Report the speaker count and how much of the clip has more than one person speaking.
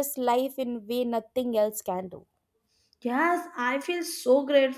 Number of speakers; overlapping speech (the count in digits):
2, no overlap